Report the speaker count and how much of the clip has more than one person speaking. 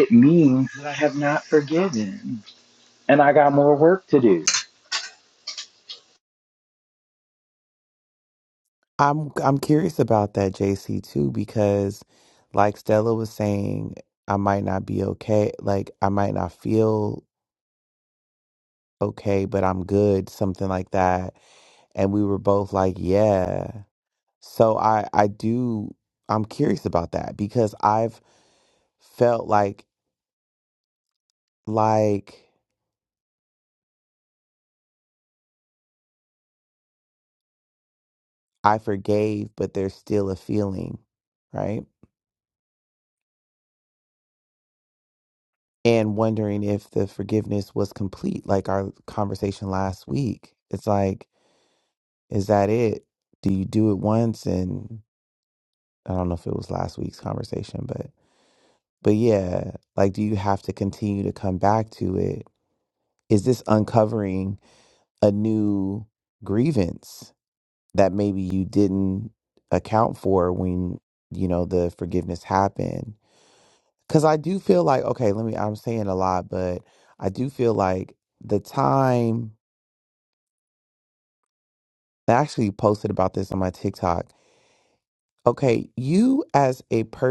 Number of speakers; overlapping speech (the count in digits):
2, no overlap